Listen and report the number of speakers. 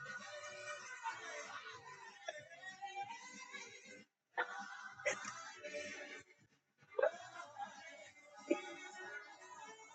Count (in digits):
0